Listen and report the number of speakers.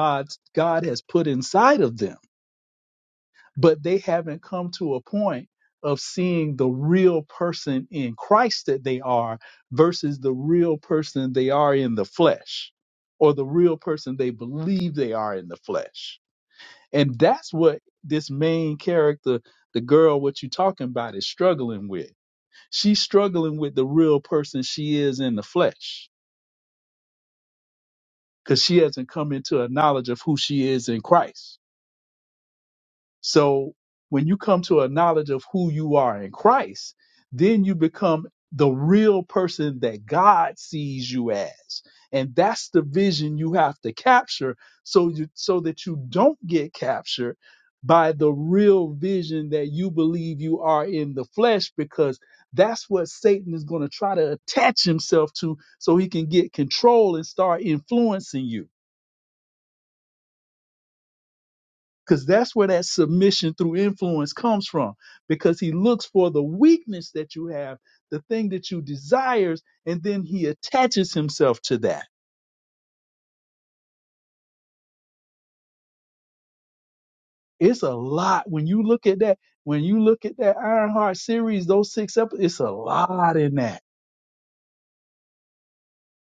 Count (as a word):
one